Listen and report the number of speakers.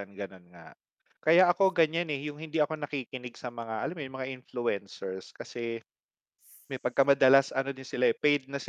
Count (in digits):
1